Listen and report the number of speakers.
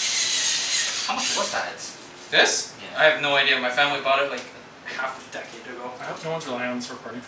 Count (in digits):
3